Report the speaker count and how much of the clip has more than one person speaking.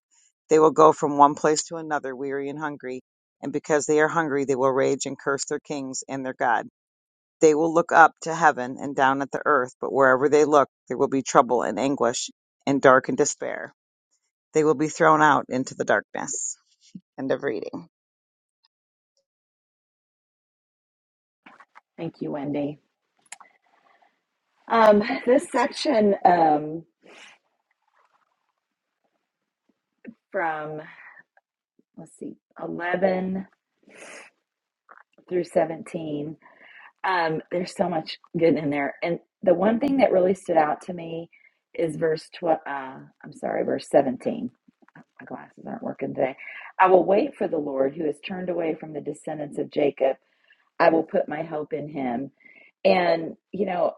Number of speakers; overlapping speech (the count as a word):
two, no overlap